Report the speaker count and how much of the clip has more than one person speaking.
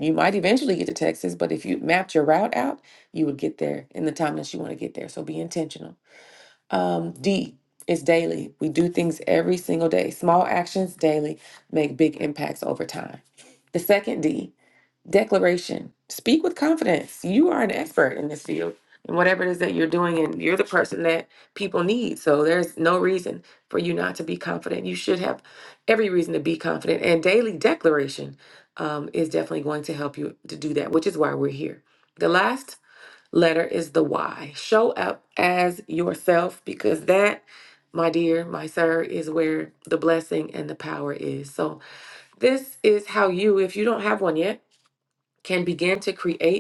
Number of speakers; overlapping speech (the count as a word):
one, no overlap